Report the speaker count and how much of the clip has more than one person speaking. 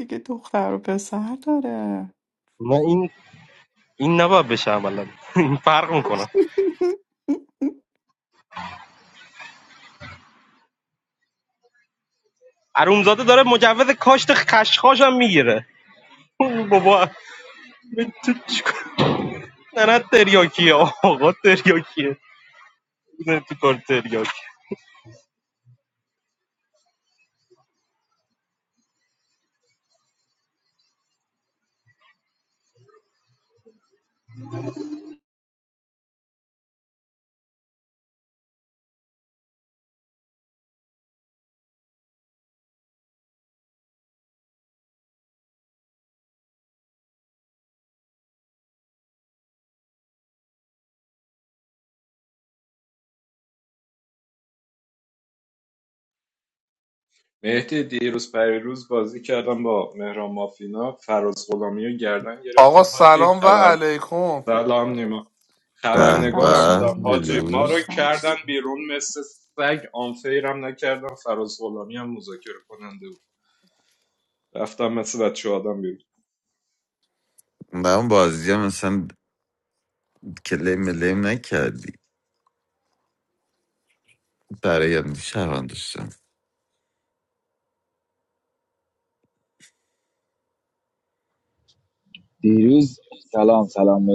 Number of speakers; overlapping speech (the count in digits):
6, about 4%